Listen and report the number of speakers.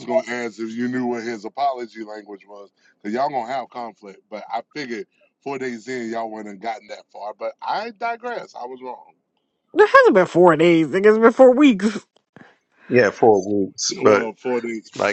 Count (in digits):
3